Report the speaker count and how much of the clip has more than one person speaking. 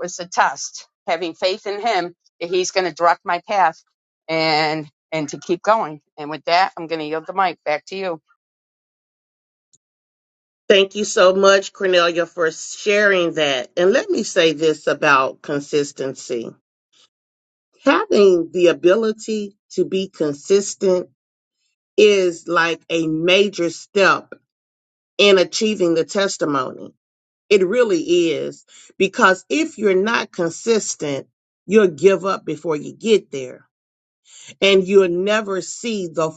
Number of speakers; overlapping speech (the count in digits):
2, no overlap